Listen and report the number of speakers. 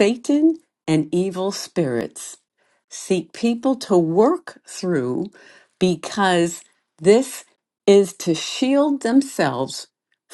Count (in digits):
1